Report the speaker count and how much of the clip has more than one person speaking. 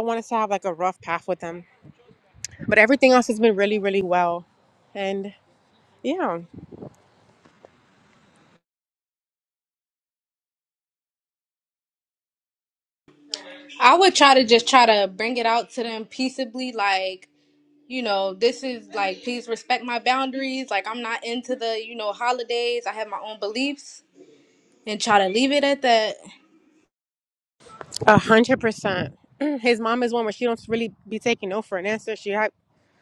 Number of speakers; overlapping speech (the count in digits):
2, no overlap